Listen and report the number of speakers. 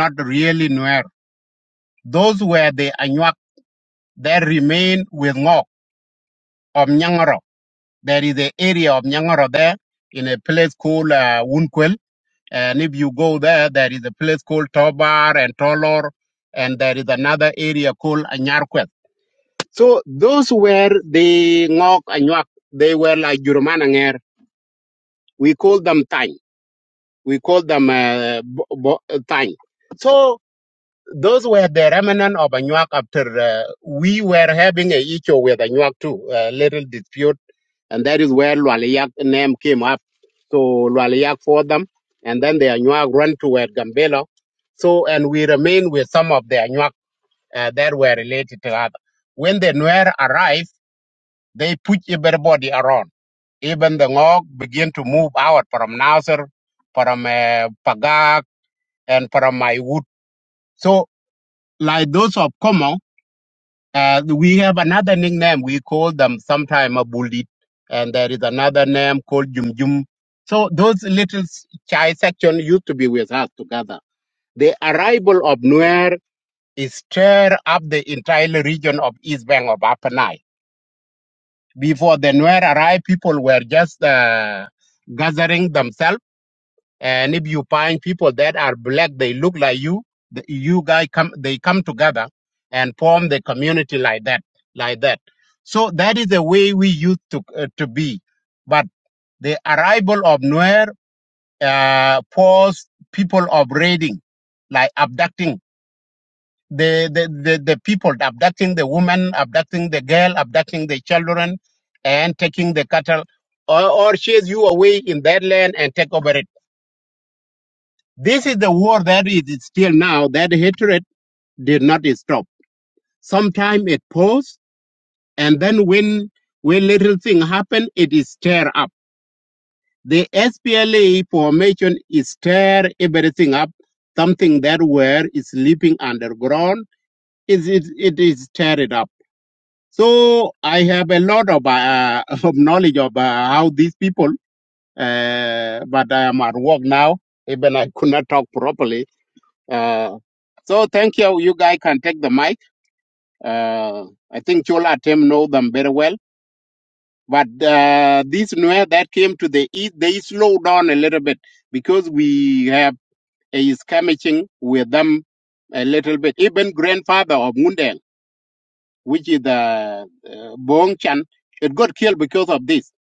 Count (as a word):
one